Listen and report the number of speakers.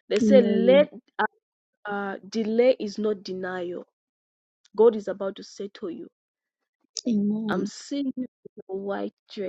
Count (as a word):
two